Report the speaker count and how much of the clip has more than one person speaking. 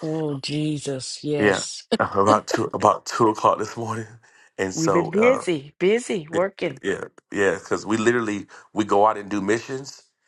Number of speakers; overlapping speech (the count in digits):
2, about 10%